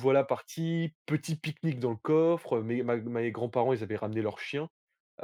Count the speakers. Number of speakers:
1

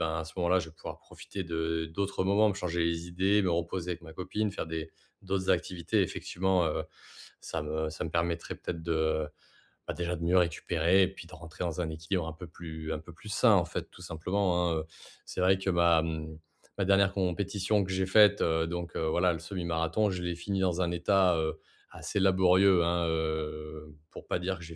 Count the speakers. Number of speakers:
1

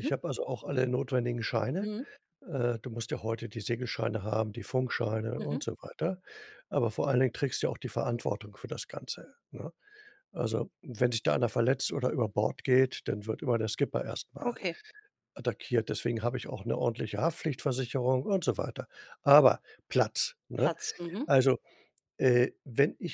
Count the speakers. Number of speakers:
2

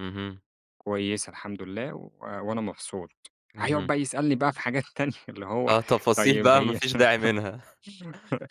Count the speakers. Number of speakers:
2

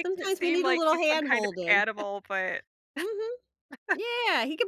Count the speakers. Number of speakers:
2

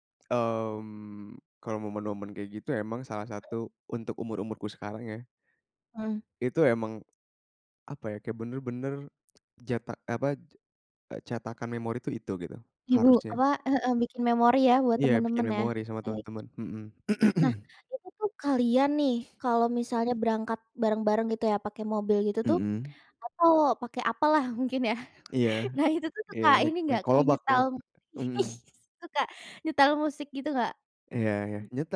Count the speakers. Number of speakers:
2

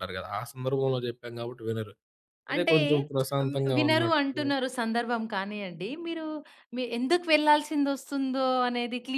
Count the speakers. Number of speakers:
2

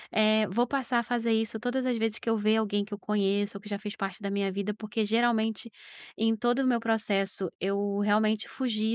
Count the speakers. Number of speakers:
1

